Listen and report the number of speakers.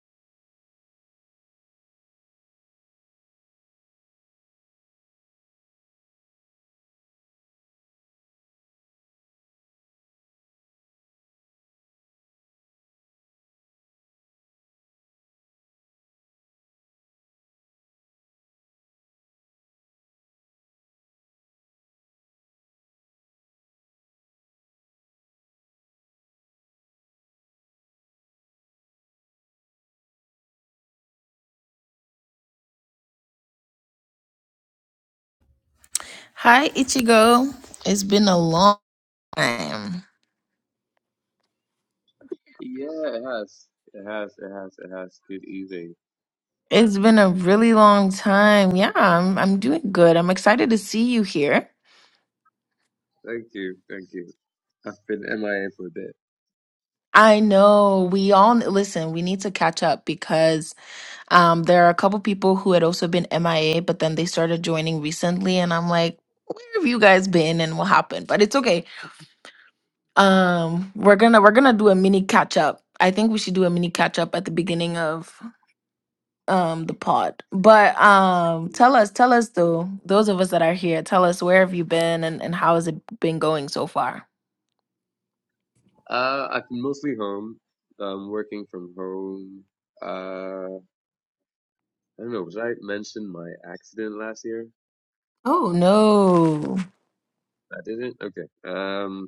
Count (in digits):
2